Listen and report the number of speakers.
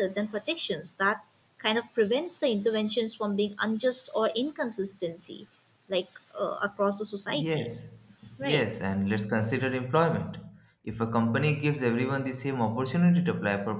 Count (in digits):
2